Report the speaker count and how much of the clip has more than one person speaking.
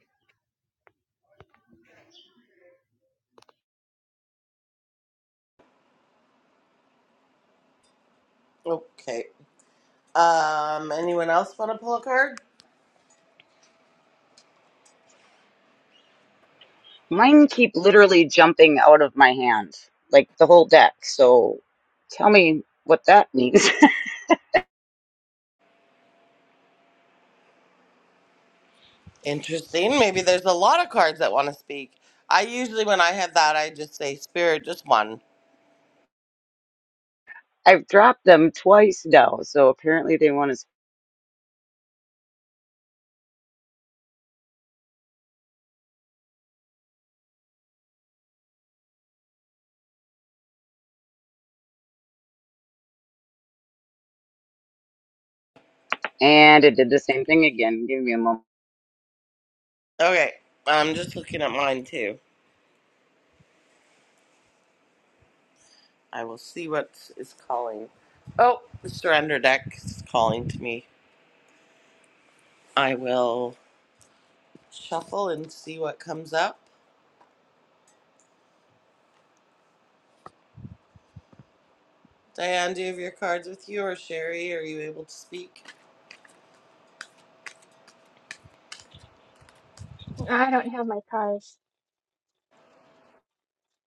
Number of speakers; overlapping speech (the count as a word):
three, no overlap